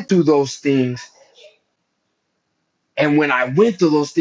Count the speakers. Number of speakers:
one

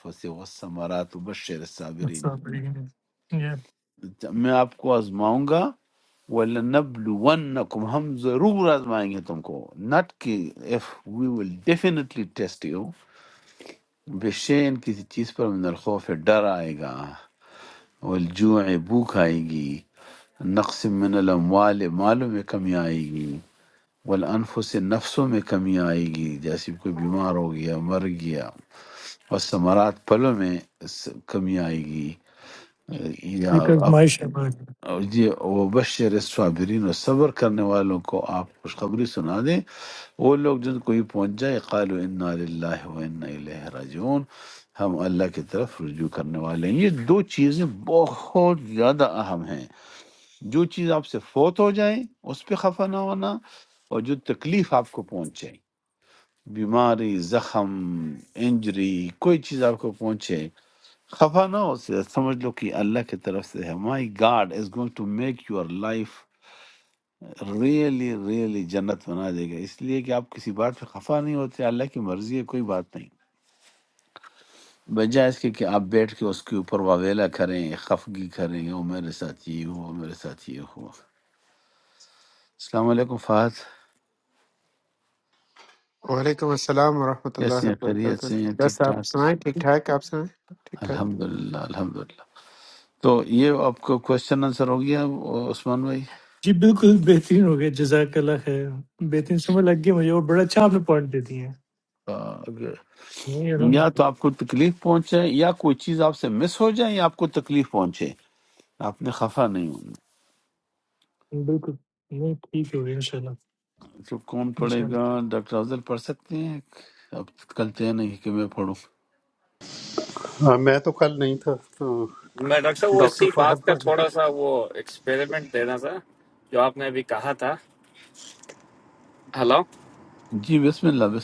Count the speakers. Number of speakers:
five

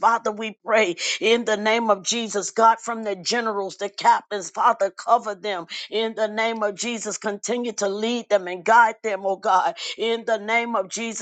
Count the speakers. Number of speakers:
one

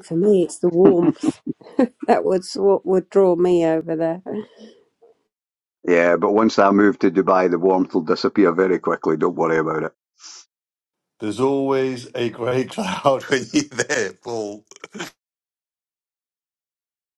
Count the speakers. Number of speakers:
three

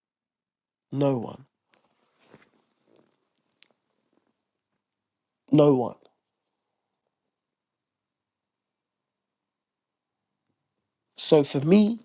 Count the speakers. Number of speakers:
one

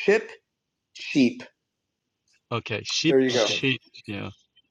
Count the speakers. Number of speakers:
two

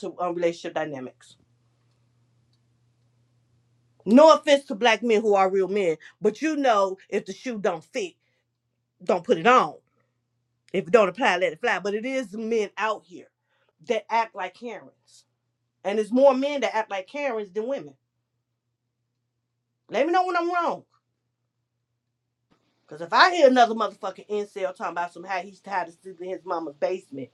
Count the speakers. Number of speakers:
one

